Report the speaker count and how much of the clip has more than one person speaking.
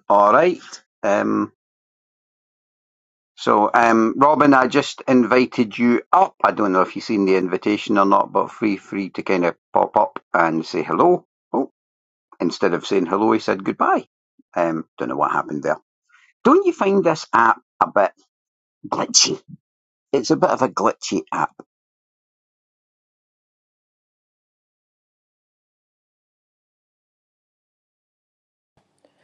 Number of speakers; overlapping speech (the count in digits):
1, no overlap